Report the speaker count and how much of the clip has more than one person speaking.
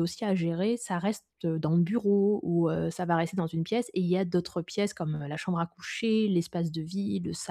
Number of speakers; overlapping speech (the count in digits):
1, no overlap